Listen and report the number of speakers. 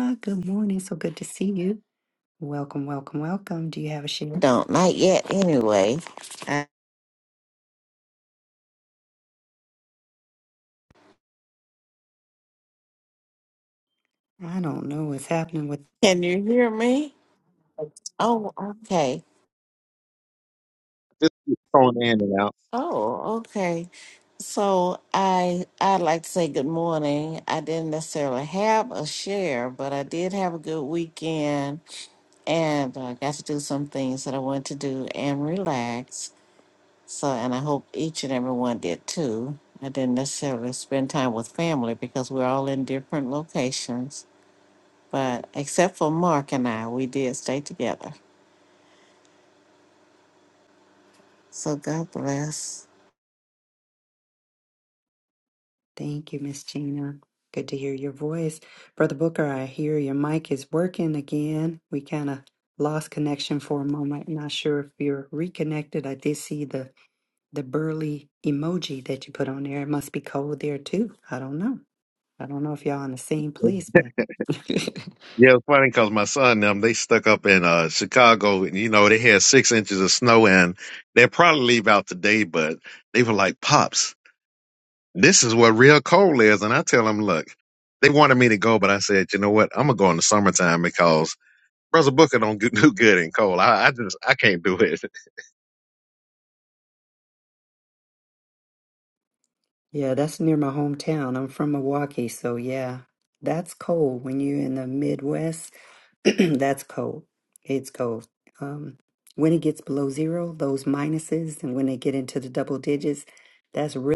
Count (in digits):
3